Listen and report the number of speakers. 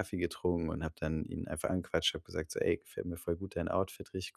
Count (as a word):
one